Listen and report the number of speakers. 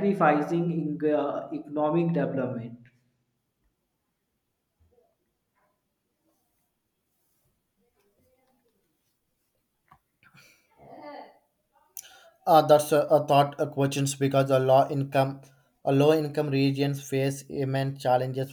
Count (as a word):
two